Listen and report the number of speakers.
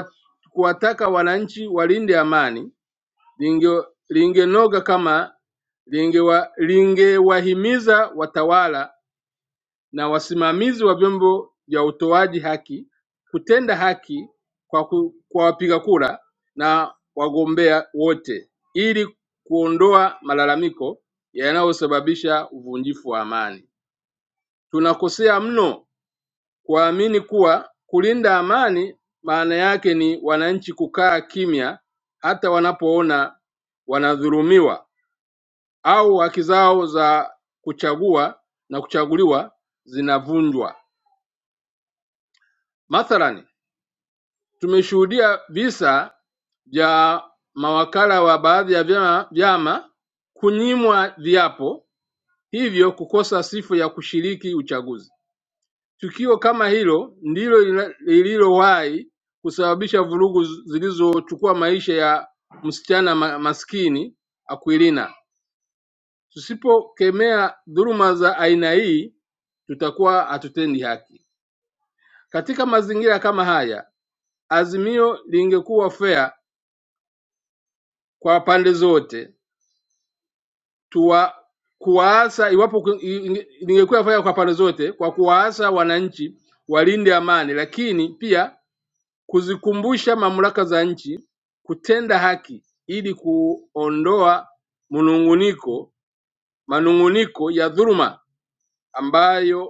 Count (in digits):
1